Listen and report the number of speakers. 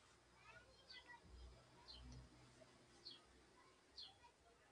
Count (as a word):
zero